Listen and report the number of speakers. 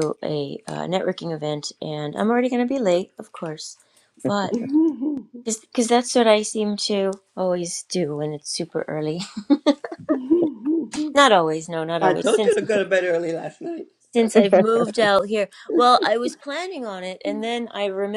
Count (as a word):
two